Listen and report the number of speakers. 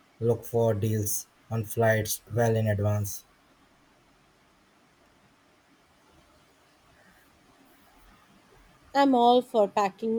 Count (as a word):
two